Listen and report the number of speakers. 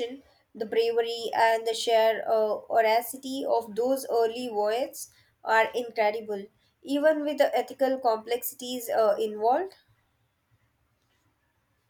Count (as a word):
one